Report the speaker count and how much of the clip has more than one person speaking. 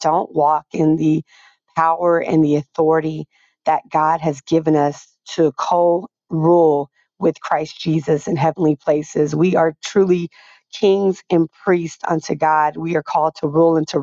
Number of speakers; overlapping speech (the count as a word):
one, no overlap